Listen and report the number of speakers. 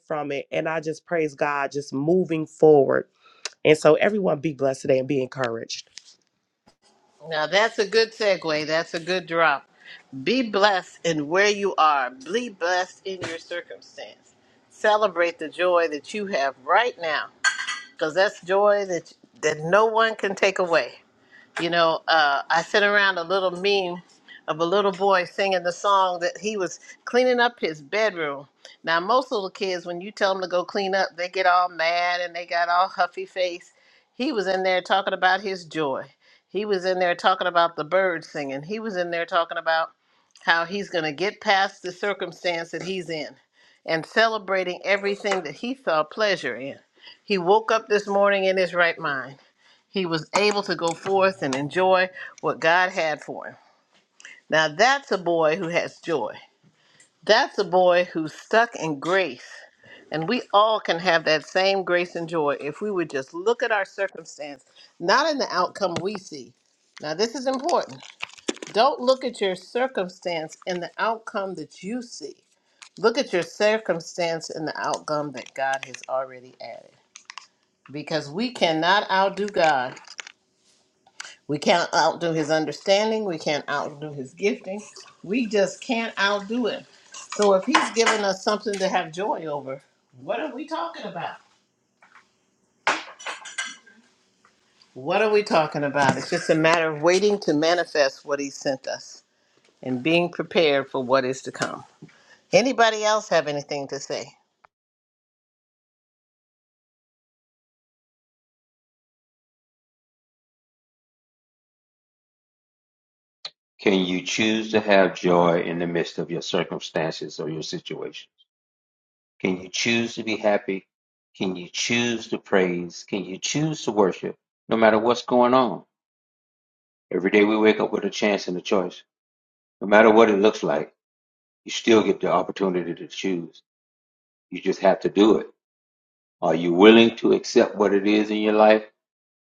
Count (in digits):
3